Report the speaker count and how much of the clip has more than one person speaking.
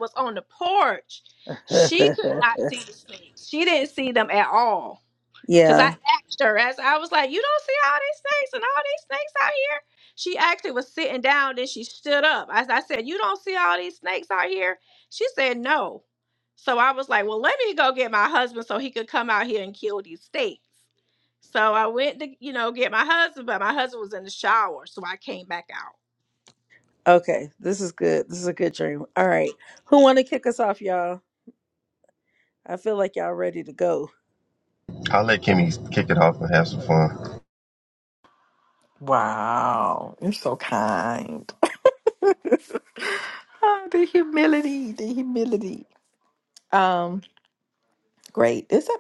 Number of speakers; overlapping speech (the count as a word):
four, about 1%